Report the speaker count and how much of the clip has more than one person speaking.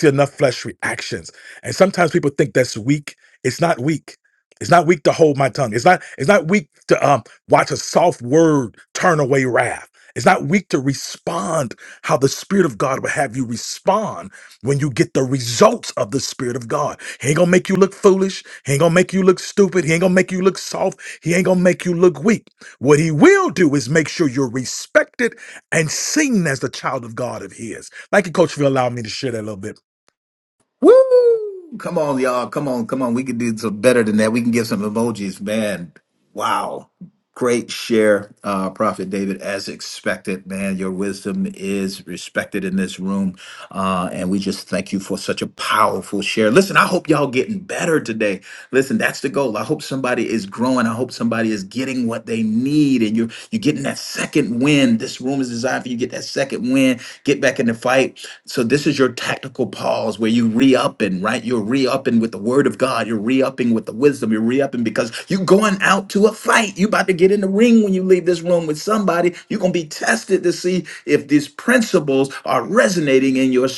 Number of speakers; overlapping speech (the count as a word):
two, no overlap